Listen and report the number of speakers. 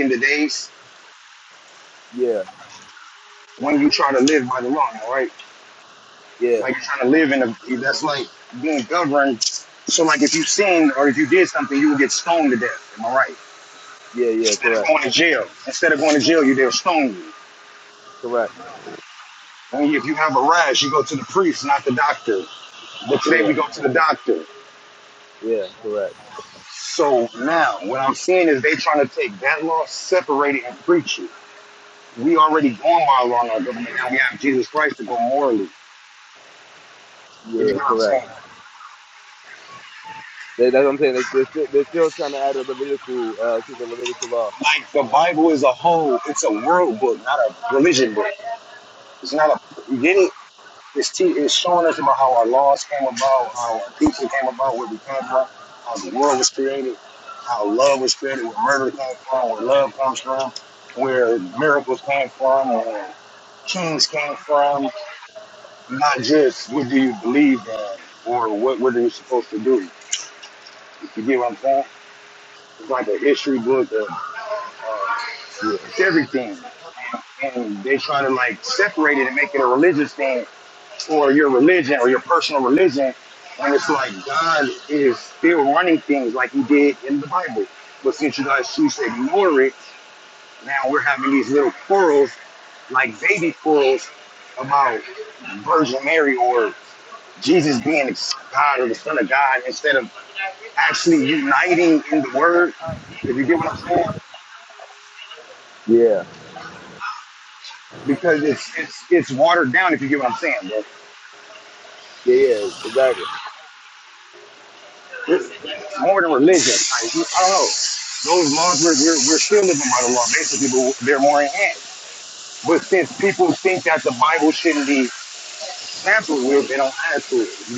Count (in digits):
2